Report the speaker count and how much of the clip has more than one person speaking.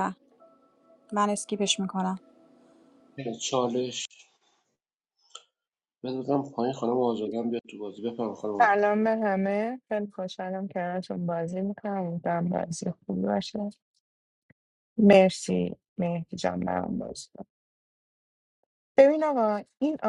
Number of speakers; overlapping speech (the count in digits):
3, about 1%